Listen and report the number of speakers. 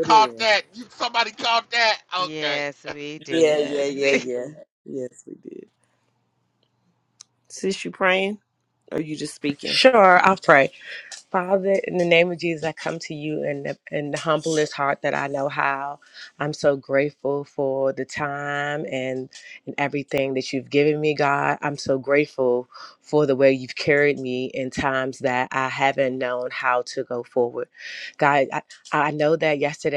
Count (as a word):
four